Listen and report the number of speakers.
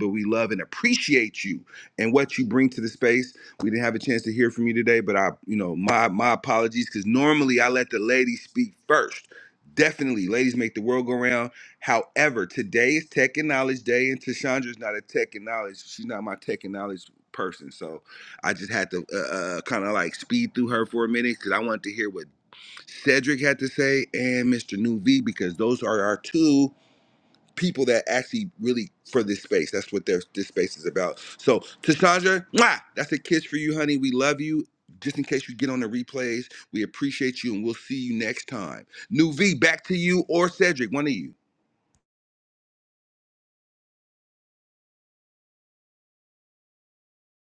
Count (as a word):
one